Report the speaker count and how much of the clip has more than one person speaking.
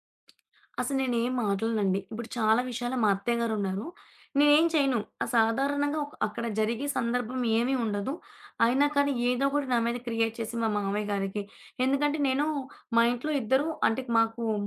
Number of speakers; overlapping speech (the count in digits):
1, no overlap